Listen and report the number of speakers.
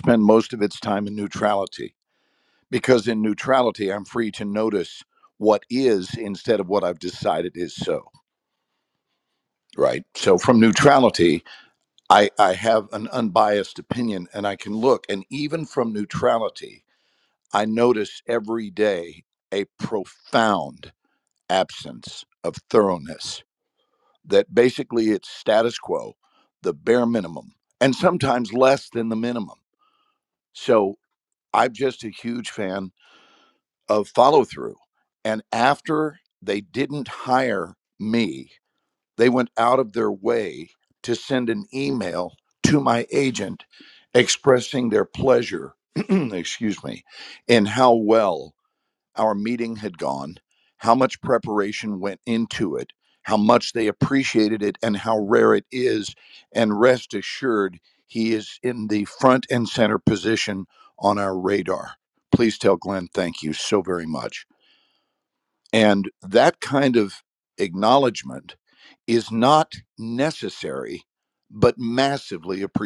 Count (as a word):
one